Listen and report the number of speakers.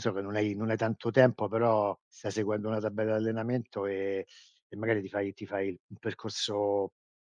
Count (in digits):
1